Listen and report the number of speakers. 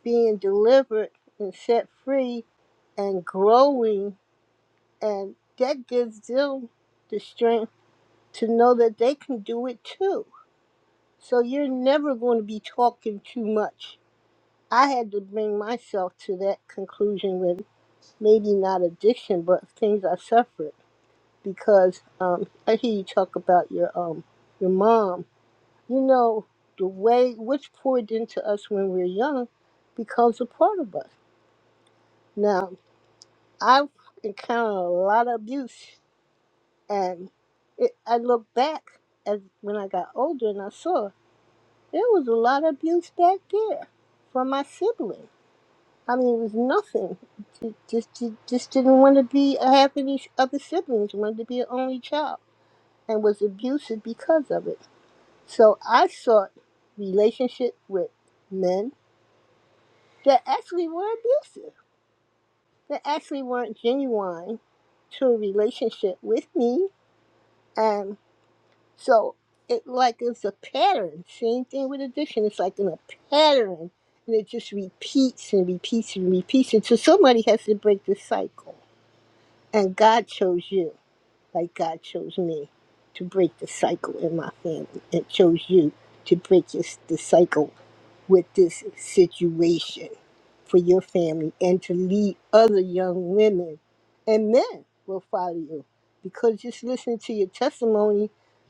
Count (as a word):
one